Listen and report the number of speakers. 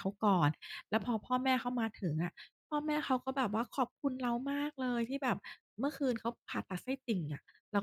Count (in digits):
1